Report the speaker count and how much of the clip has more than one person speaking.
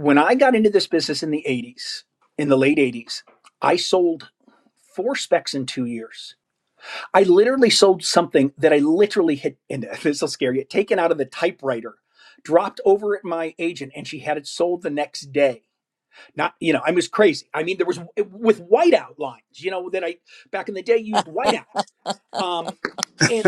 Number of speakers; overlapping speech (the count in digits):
1, no overlap